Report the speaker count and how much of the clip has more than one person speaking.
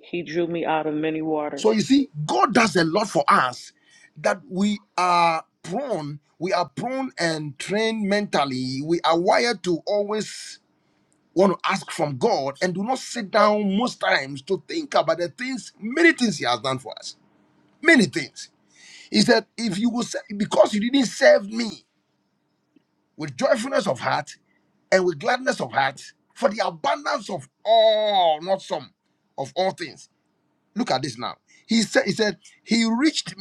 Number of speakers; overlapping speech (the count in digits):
2, about 1%